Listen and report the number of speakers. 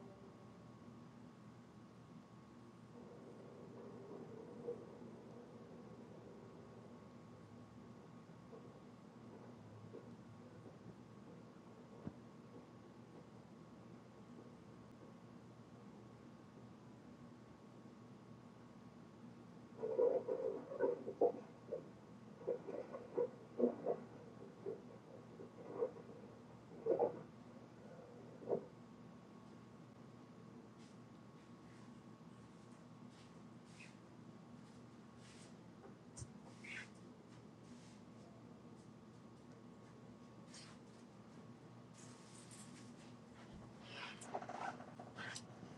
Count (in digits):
0